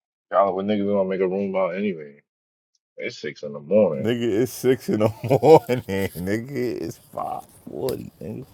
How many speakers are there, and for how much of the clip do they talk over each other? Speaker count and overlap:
2, under 1%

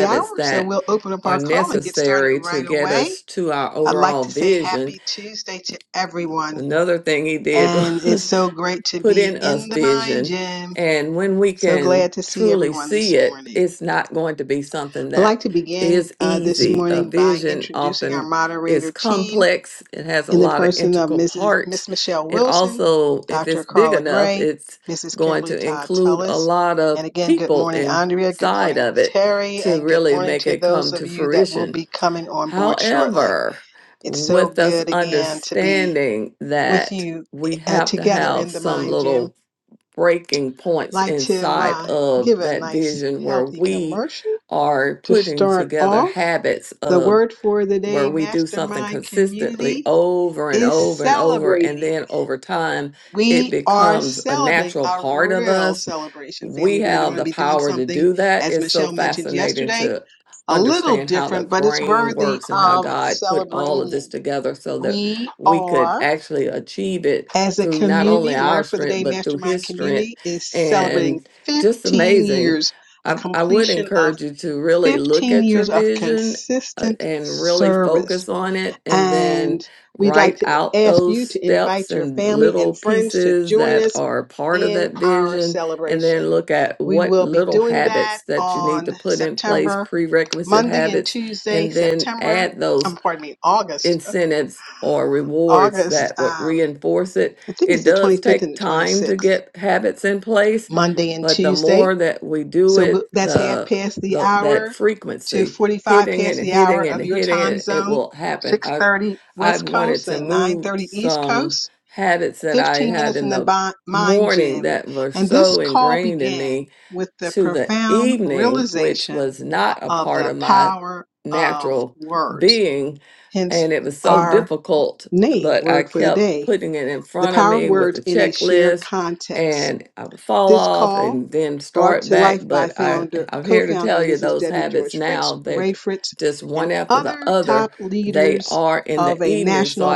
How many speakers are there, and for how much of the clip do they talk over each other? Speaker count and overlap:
2, about 63%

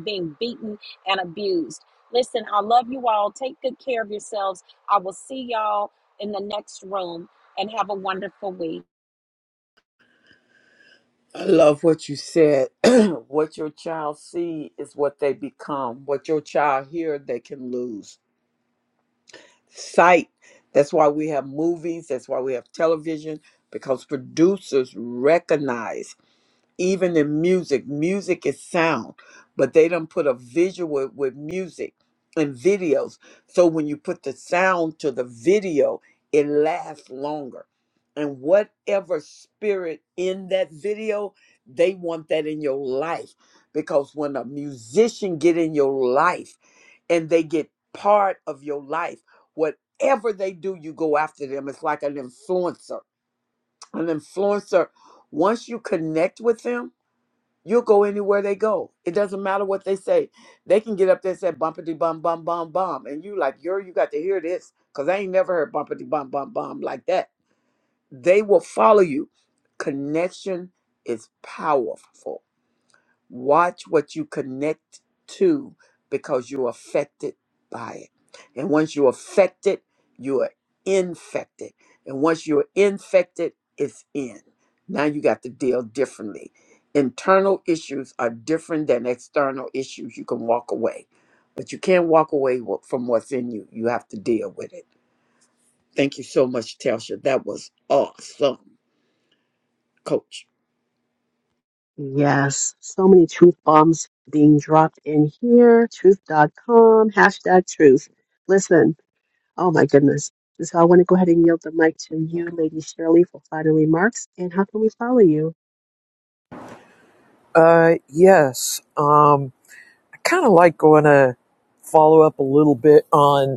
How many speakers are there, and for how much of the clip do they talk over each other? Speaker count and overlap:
4, no overlap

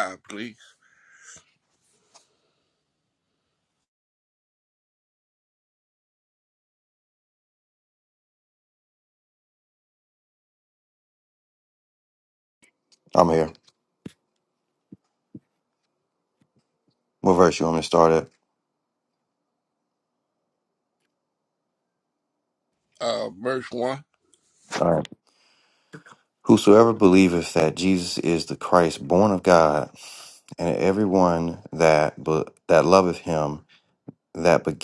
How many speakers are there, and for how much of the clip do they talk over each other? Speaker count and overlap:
2, no overlap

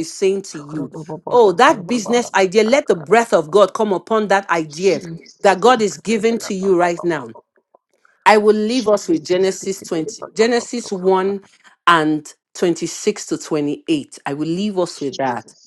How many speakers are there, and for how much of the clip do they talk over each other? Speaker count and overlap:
2, about 11%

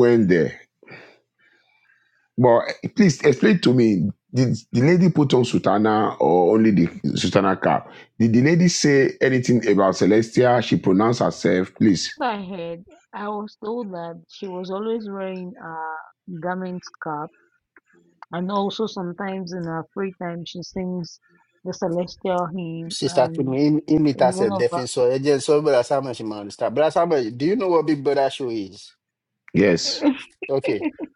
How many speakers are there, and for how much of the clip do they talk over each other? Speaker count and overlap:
3, about 4%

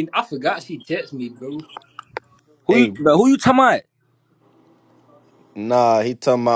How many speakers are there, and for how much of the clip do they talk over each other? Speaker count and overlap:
3, about 4%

